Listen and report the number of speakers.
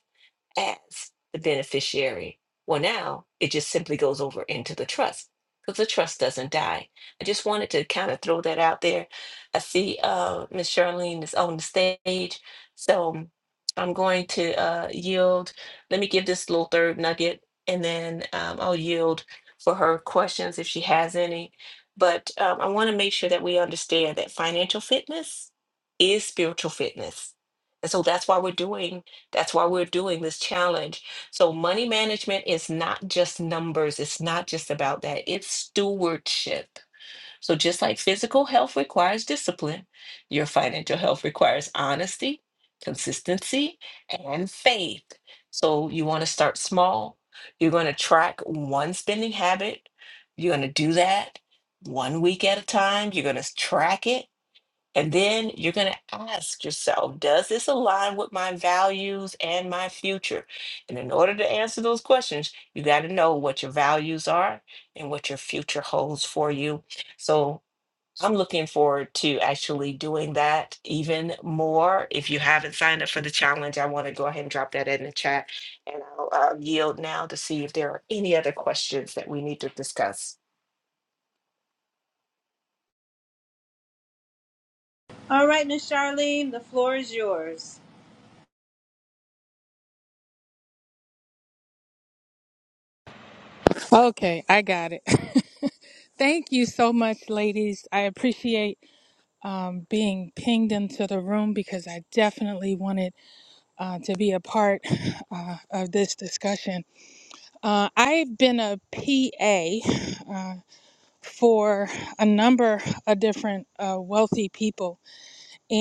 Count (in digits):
3